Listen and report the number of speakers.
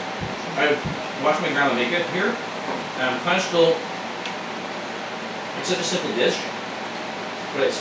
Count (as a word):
one